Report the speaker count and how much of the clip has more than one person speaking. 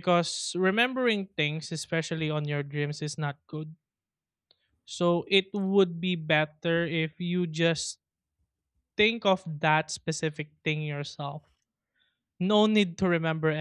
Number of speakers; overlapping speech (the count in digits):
1, no overlap